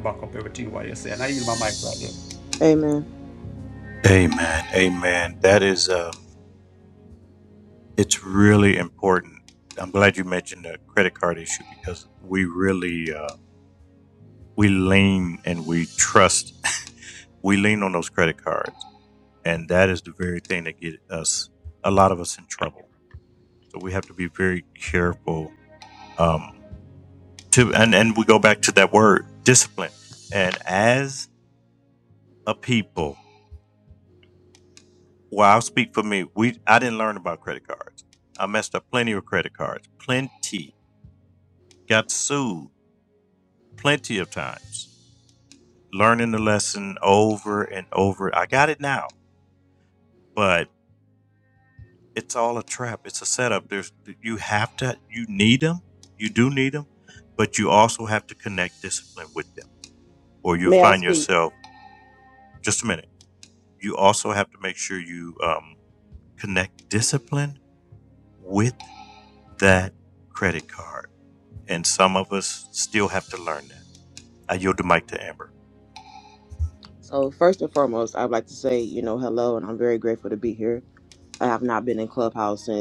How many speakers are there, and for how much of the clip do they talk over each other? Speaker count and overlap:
3, about 1%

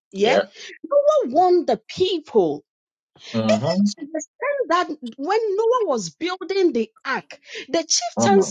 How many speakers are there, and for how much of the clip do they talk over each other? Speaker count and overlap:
2, about 7%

